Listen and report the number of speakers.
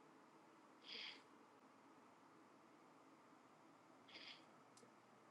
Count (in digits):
0